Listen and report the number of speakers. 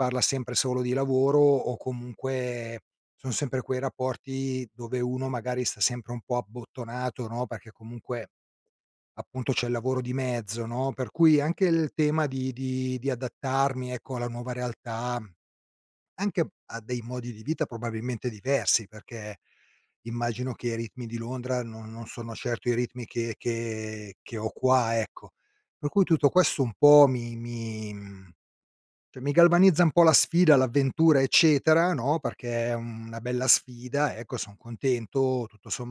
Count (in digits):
1